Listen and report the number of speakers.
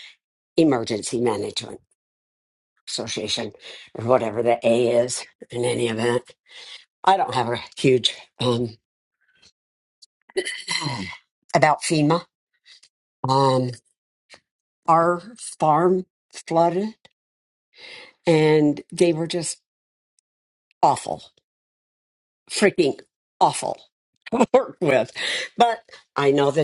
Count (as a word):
one